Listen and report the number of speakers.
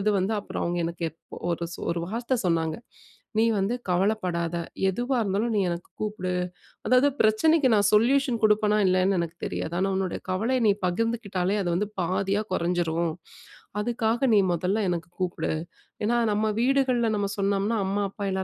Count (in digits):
1